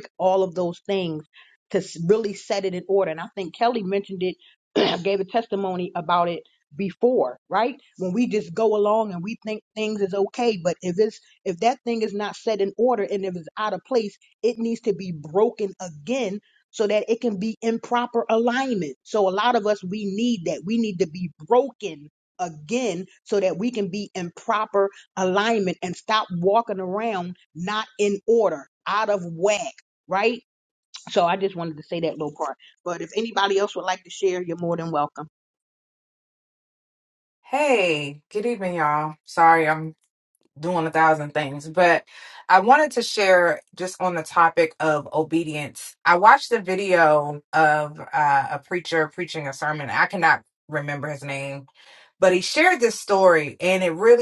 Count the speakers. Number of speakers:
2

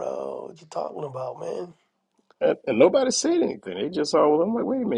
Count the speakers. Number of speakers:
2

